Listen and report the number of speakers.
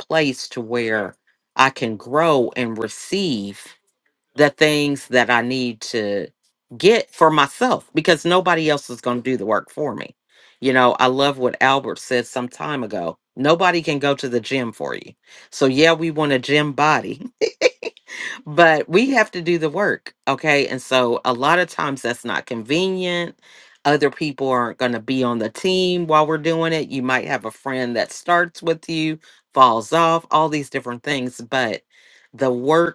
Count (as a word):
one